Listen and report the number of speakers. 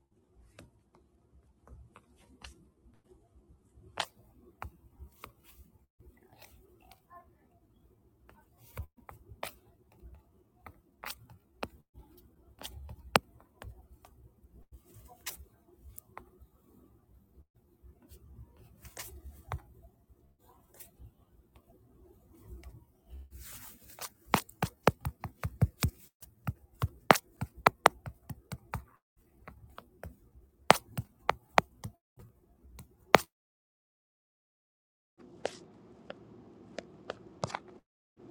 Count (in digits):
0